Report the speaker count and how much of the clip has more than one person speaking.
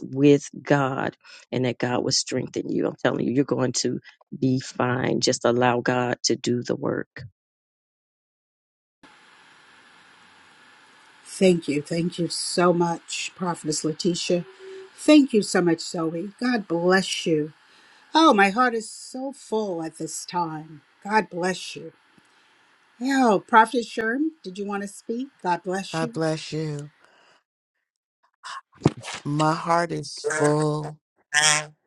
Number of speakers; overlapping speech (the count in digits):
3, about 1%